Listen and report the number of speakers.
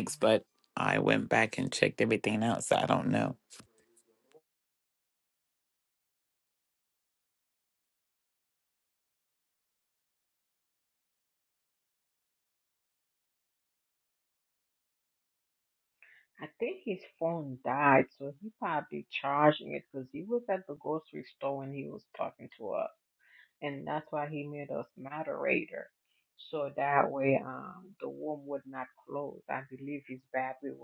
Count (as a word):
two